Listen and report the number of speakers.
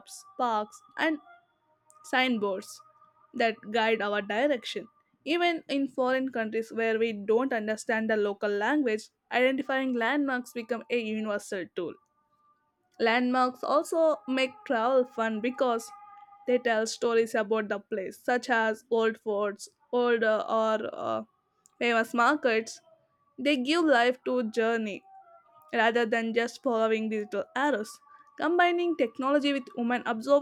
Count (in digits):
1